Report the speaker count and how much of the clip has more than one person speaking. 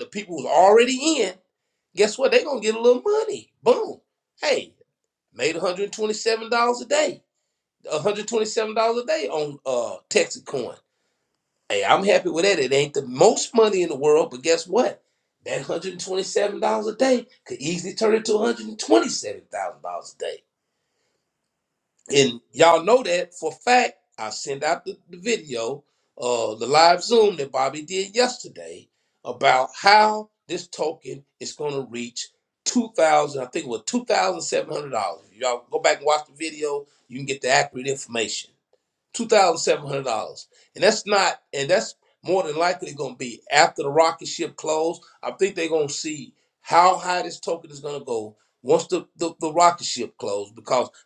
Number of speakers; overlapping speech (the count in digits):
1, no overlap